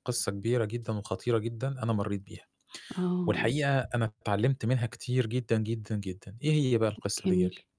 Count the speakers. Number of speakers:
2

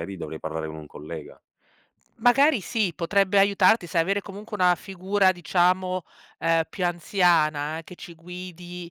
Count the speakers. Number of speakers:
2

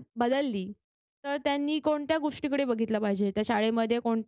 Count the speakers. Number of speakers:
1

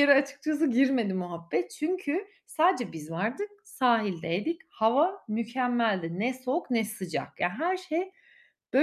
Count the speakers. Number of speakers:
1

